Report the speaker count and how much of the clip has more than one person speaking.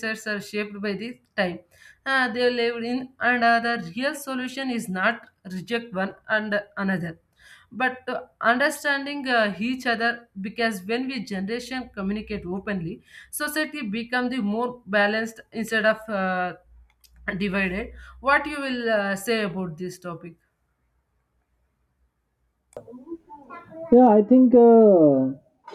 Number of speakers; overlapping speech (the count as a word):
two, no overlap